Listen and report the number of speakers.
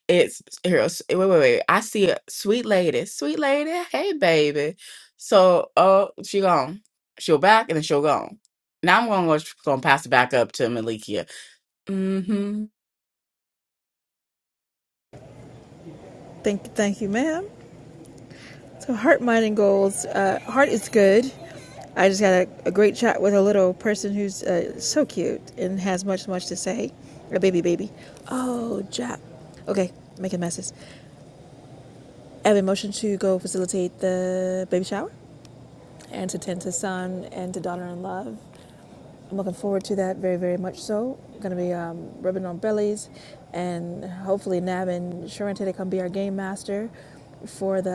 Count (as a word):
two